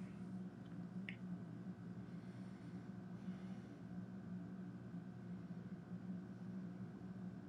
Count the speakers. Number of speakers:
0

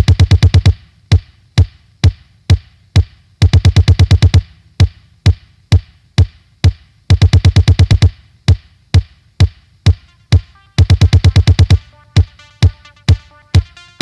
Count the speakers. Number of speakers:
0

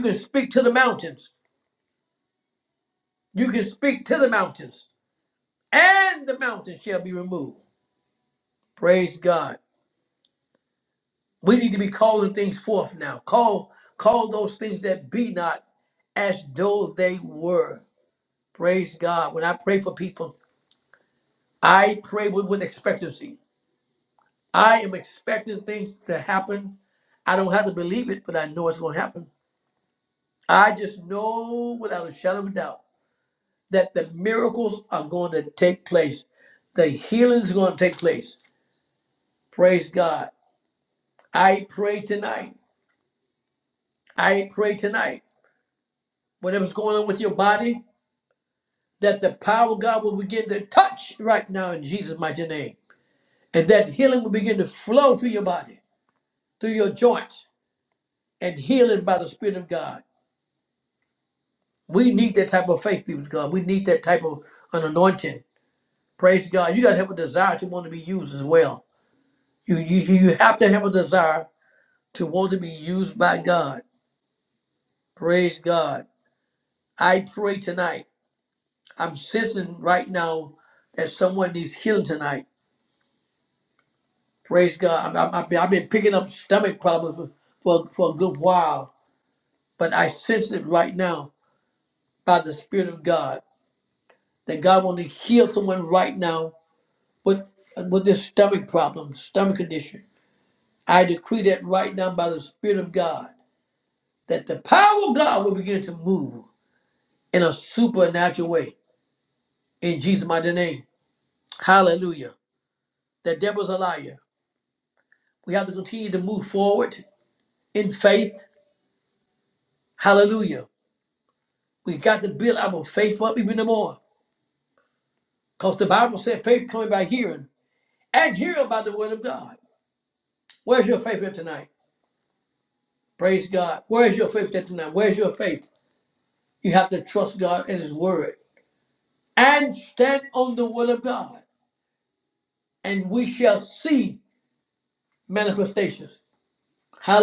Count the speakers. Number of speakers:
1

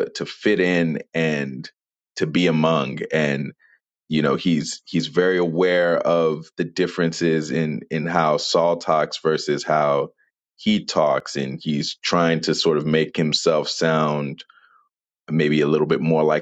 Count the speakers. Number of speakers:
1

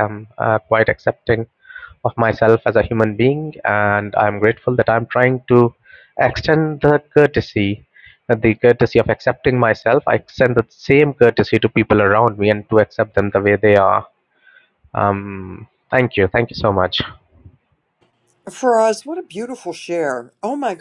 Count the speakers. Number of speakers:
2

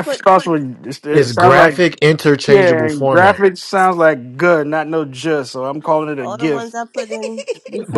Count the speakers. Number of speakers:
3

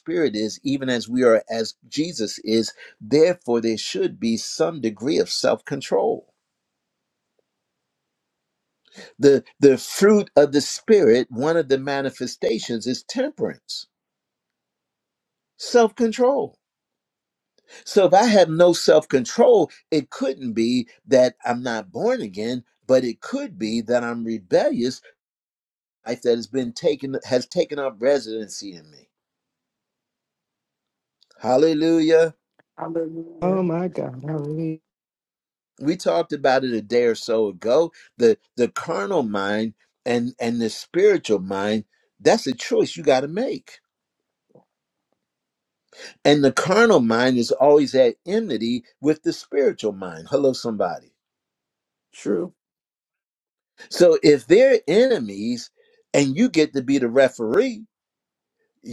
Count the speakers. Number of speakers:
3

